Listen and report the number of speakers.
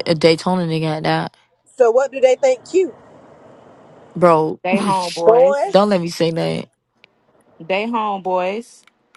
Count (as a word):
three